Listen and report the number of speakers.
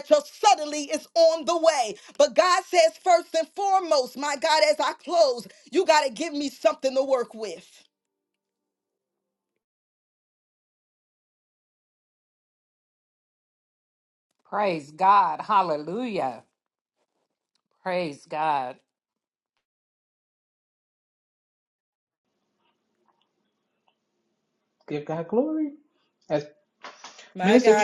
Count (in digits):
3